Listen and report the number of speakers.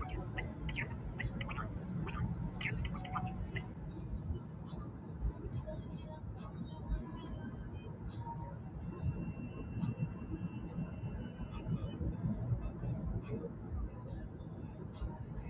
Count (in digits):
0